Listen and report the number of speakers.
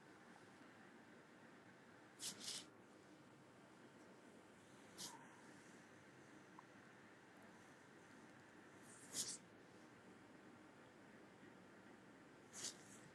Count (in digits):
0